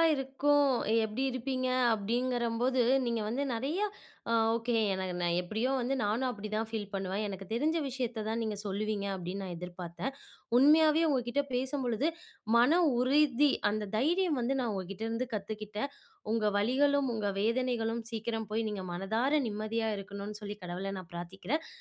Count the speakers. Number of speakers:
1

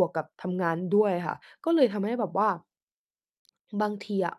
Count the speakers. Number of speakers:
1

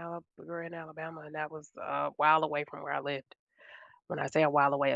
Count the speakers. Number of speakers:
1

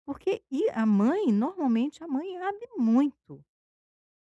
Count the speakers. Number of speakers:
1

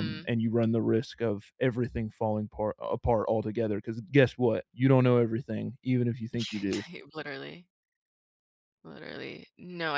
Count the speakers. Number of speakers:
2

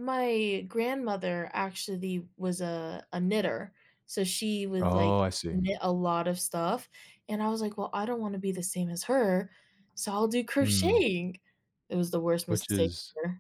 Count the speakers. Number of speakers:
2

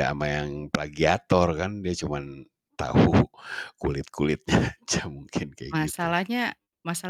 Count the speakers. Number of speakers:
2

